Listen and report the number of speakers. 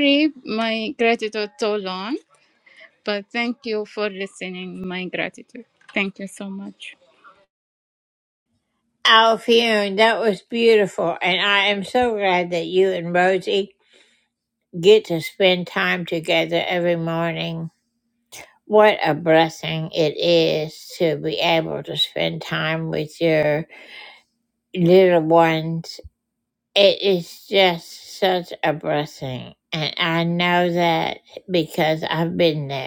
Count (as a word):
two